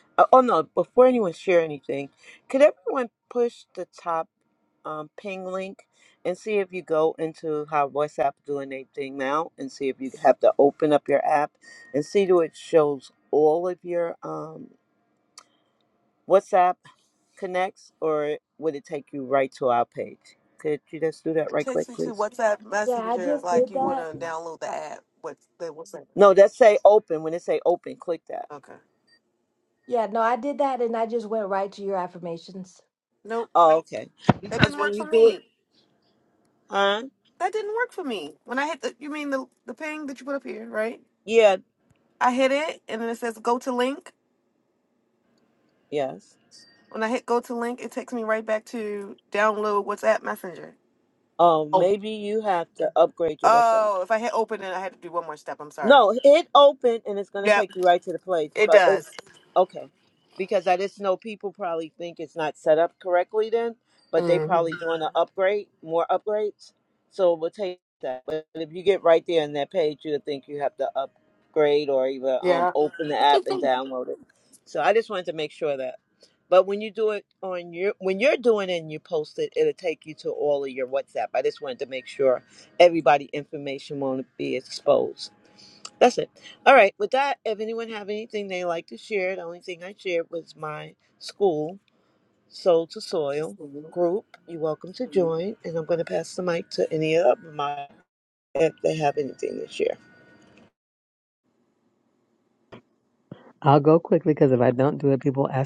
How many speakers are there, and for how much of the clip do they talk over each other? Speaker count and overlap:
four, about 5%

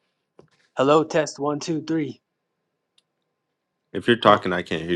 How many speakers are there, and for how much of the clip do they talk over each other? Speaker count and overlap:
two, about 4%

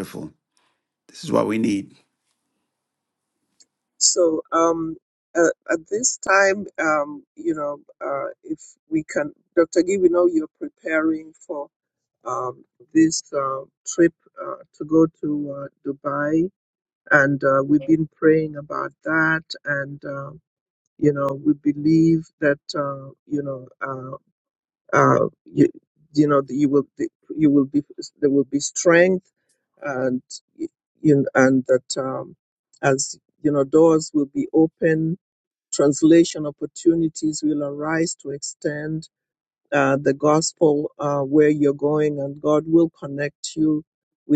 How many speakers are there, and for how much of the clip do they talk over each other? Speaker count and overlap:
two, no overlap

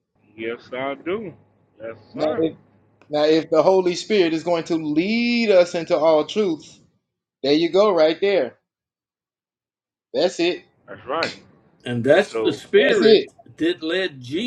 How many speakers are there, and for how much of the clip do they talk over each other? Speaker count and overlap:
three, about 9%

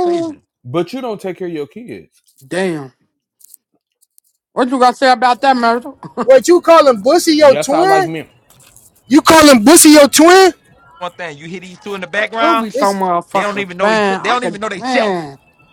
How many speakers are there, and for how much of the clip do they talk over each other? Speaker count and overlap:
four, about 20%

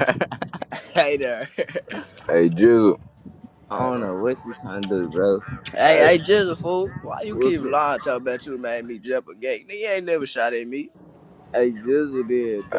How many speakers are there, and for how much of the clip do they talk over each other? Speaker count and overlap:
four, about 10%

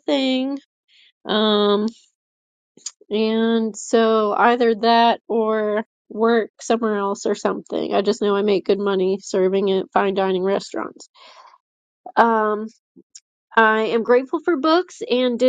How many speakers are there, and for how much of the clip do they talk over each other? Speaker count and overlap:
one, no overlap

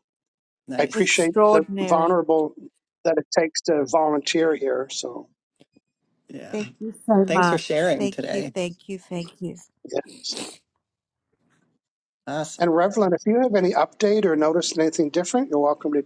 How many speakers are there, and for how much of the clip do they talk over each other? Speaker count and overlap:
three, about 13%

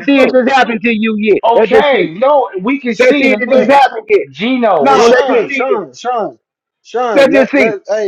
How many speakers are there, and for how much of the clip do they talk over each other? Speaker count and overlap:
three, about 42%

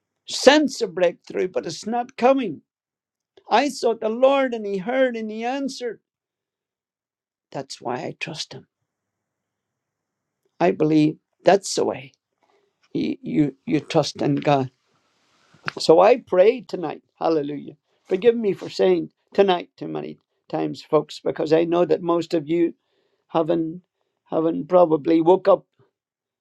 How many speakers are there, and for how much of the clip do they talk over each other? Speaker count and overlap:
one, no overlap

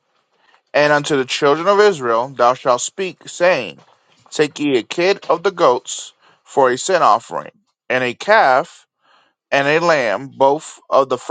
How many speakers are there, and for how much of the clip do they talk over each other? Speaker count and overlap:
one, no overlap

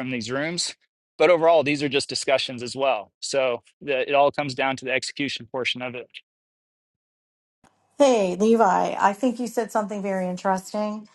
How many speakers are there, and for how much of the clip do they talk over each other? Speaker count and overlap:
two, no overlap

